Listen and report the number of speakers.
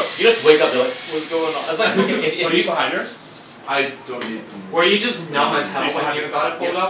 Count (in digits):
4